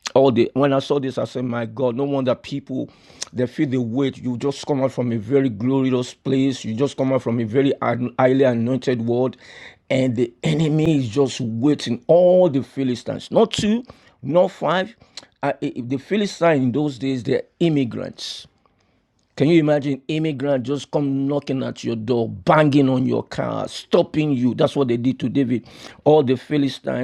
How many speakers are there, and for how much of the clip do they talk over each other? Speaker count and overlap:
1, no overlap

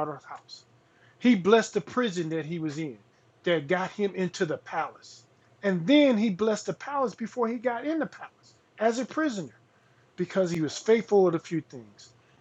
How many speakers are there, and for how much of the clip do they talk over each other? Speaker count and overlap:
1, no overlap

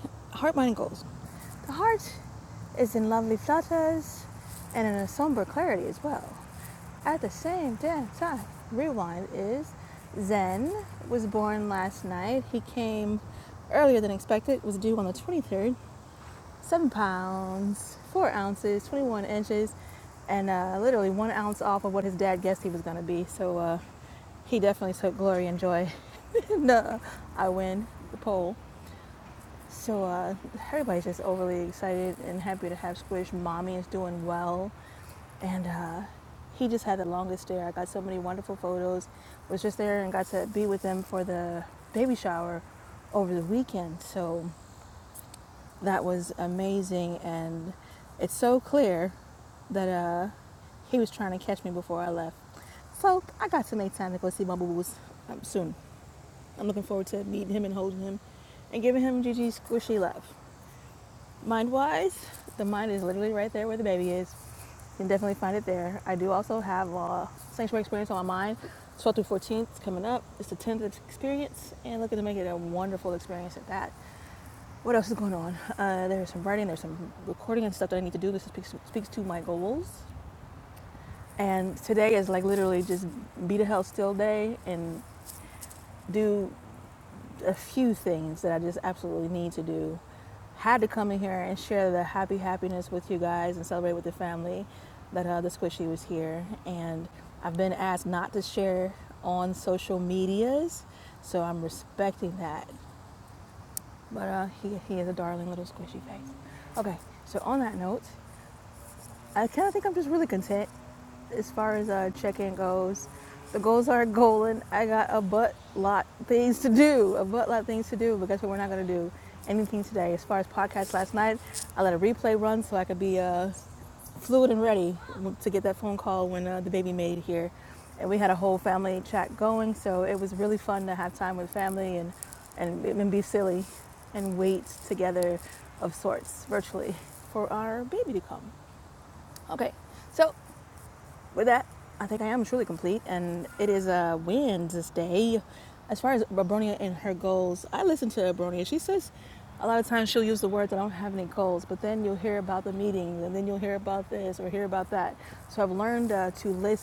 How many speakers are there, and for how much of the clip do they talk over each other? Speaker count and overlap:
1, no overlap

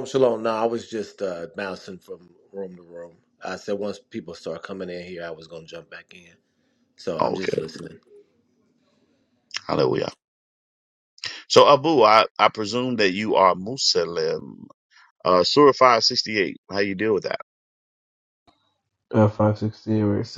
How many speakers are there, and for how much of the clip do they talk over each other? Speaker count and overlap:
3, about 2%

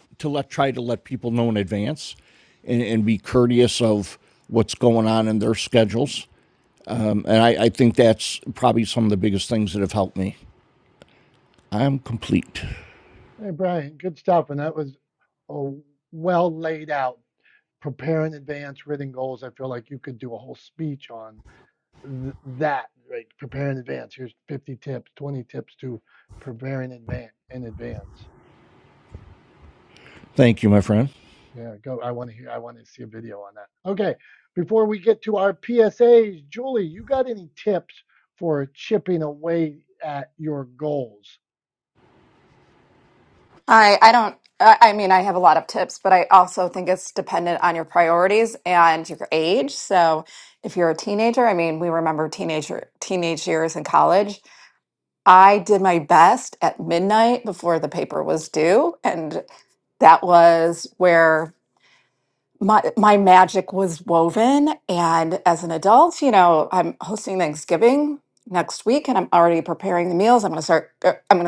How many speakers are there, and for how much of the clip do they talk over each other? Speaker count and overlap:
3, no overlap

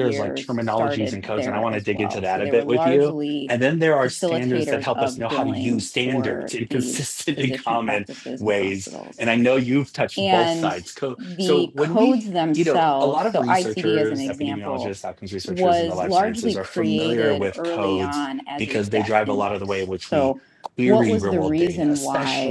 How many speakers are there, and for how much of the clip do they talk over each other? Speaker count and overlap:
2, about 77%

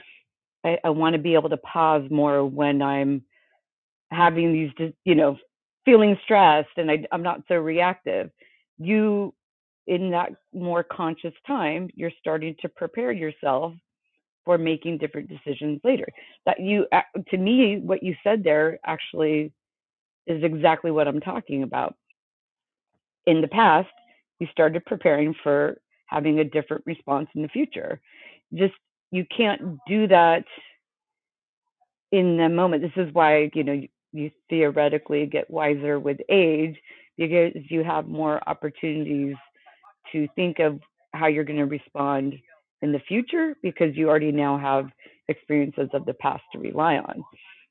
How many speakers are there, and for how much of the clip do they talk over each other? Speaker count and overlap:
1, no overlap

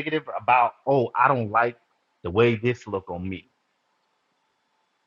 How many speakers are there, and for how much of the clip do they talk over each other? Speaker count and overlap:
1, no overlap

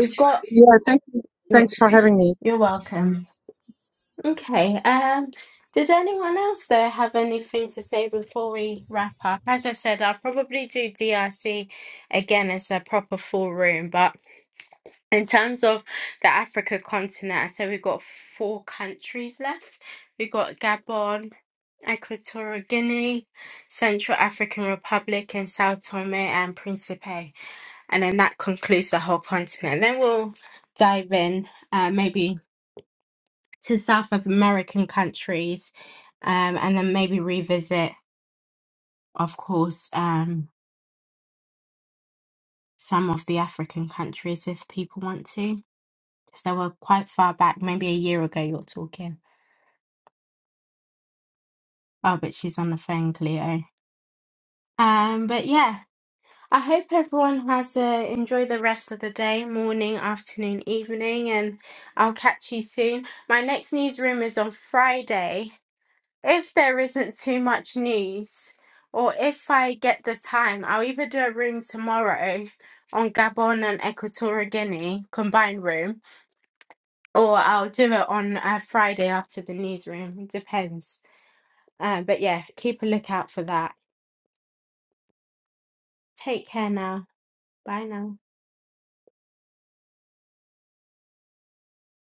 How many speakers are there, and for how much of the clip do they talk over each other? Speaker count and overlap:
2, under 1%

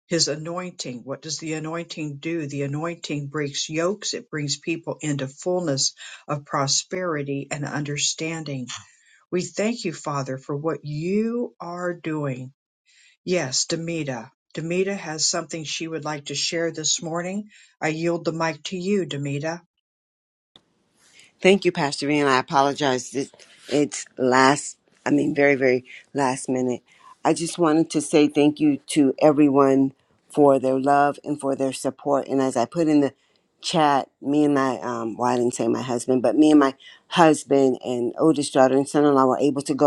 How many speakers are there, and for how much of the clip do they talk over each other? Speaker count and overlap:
2, no overlap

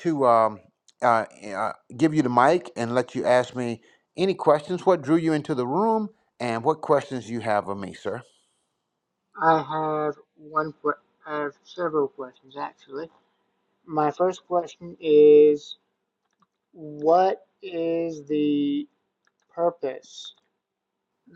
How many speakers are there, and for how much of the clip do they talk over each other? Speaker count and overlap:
2, no overlap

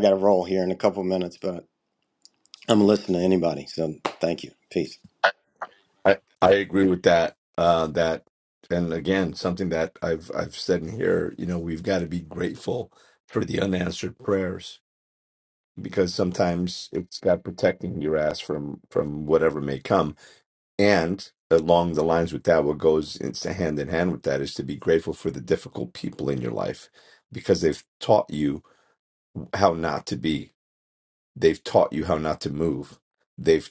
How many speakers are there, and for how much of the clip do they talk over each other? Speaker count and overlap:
2, no overlap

